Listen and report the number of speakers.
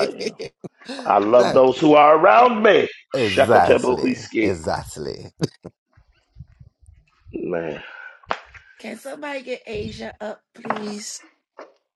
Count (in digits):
3